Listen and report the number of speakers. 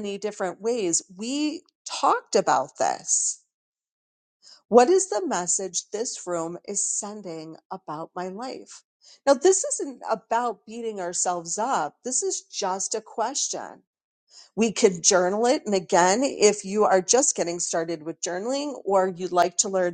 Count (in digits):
1